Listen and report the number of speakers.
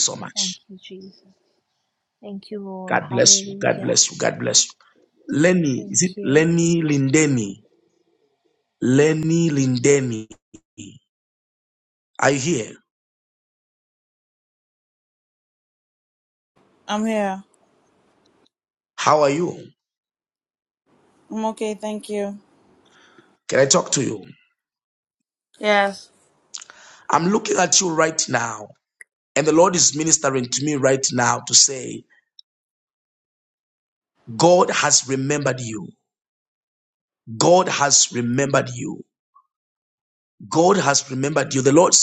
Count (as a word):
three